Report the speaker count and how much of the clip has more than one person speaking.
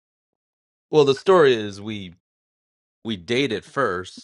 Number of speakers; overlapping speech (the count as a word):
one, no overlap